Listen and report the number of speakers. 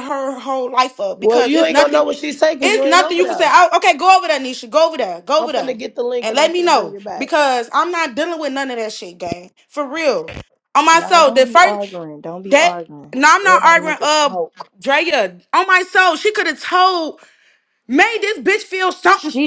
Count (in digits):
3